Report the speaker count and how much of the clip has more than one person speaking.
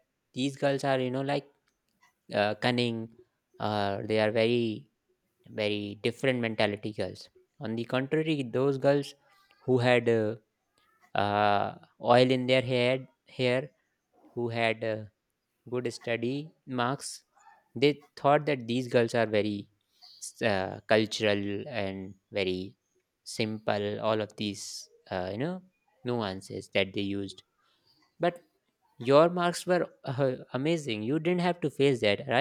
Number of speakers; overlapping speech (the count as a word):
one, no overlap